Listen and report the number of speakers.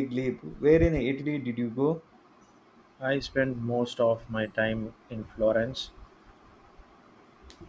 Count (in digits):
2